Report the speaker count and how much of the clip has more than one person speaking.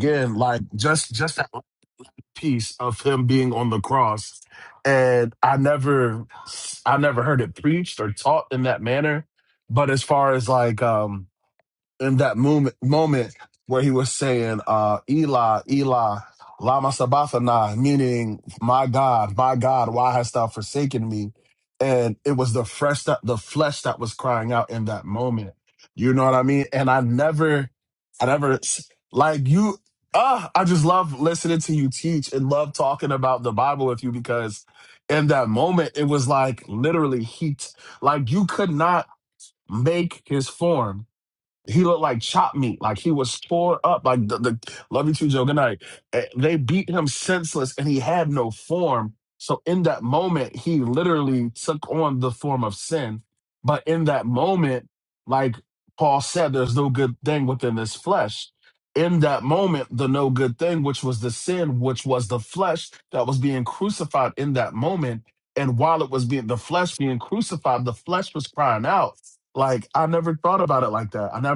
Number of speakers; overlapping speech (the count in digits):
1, no overlap